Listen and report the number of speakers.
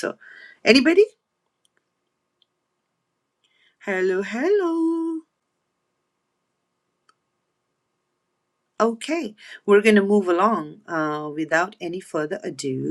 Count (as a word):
one